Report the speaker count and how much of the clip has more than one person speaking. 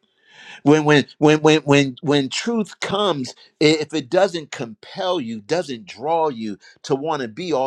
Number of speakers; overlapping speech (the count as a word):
one, no overlap